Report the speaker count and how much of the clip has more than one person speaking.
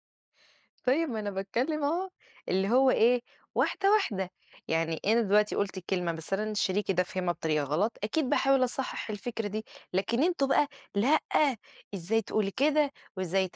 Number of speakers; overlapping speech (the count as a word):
one, no overlap